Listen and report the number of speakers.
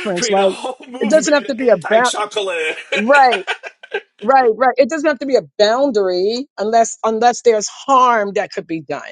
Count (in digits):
2